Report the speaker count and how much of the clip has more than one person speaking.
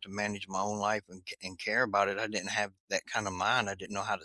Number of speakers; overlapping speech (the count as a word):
one, no overlap